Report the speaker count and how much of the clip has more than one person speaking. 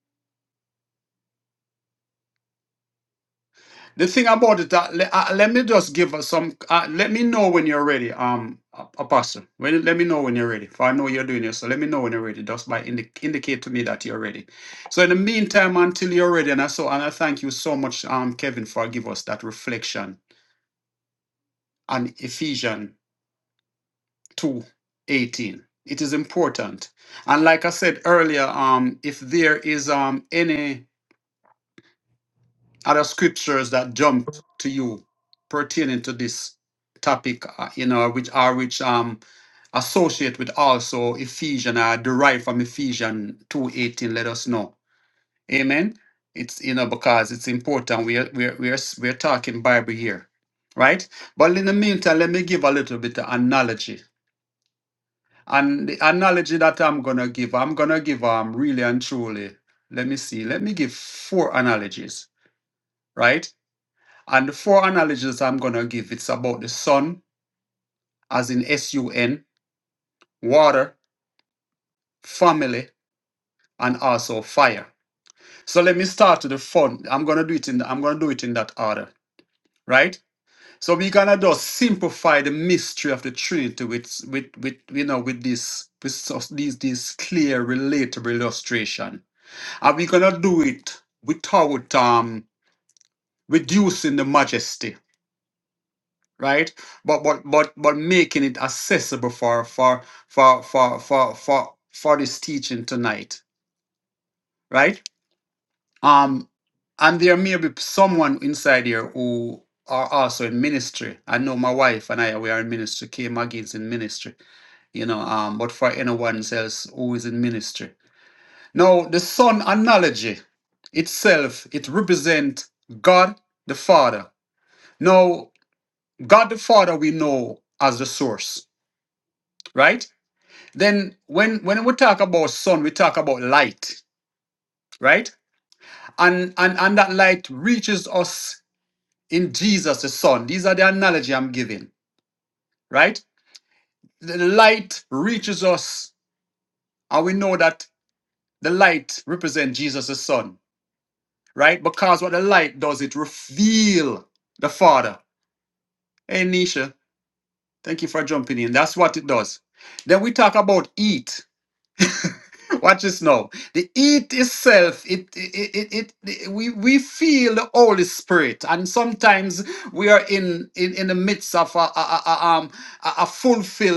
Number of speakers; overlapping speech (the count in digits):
1, no overlap